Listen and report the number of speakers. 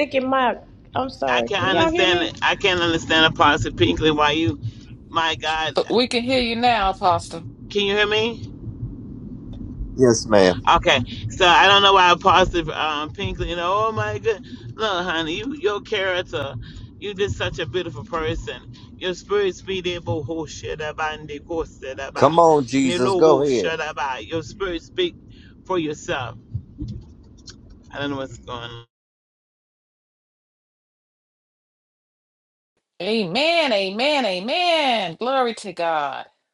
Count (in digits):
4